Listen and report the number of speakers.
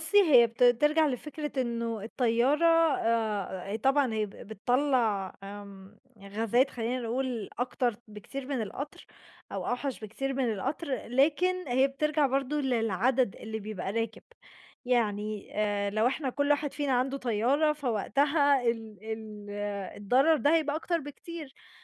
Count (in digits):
1